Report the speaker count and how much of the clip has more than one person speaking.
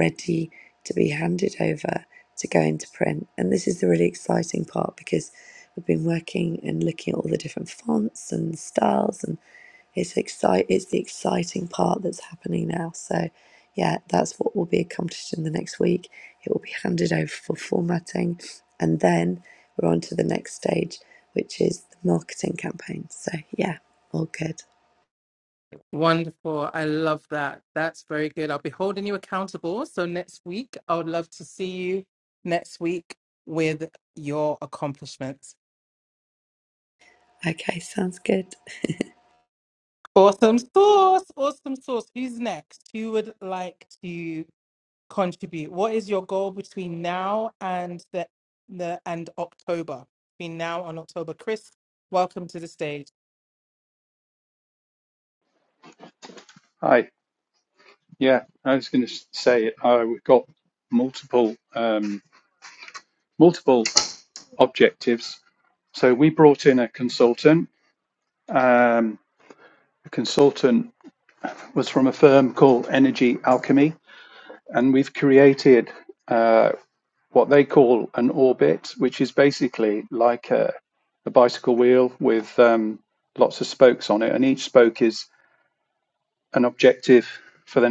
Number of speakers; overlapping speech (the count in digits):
3, no overlap